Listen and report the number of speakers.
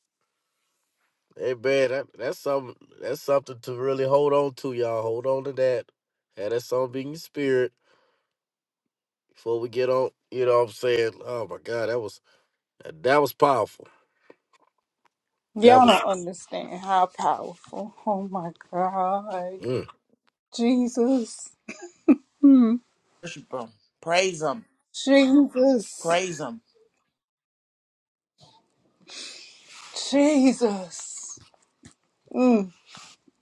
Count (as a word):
three